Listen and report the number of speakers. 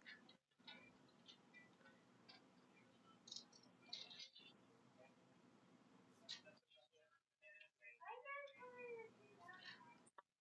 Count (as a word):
zero